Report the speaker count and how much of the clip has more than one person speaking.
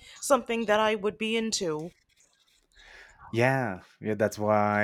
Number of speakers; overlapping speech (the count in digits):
2, no overlap